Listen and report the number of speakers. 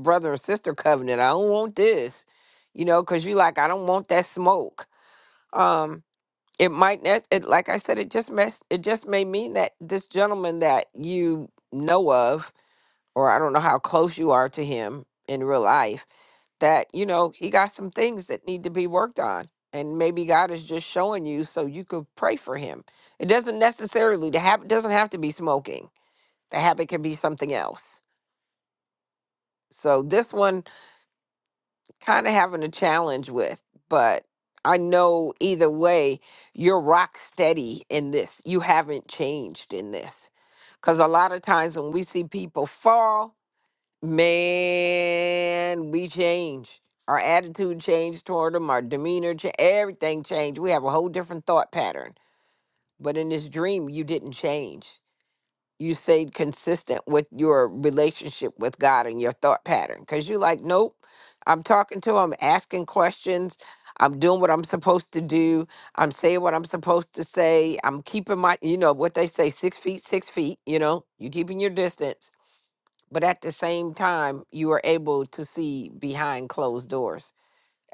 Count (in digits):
1